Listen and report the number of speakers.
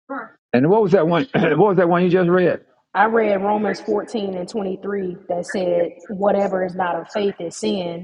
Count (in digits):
2